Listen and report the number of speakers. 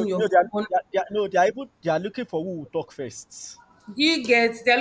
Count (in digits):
2